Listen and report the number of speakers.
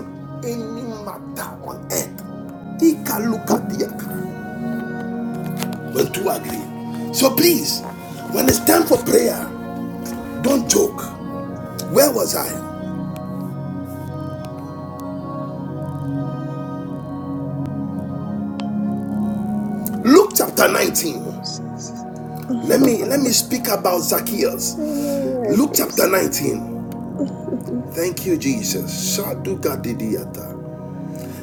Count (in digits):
2